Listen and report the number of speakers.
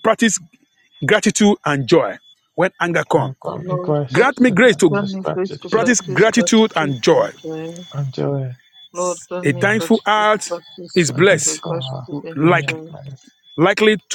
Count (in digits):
3